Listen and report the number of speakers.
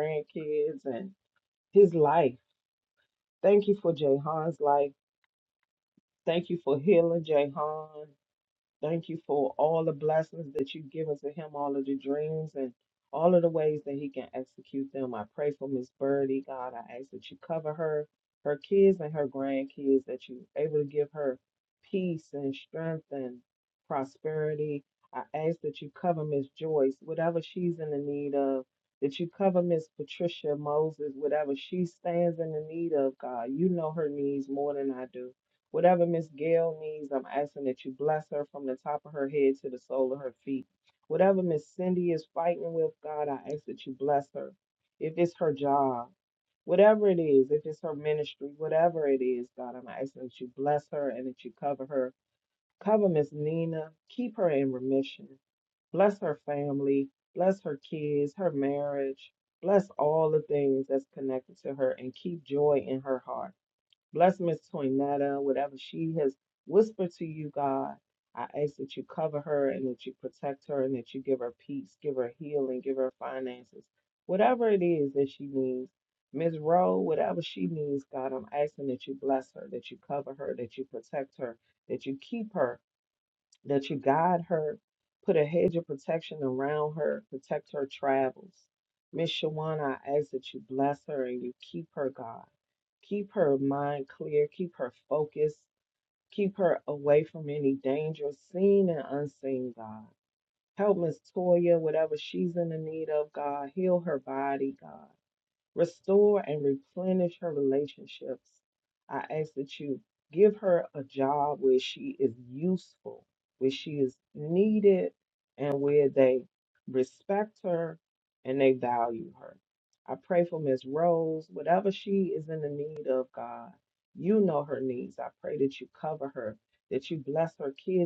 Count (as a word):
one